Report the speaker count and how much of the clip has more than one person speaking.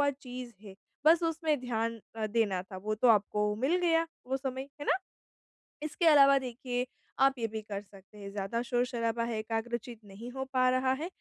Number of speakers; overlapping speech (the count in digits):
1, no overlap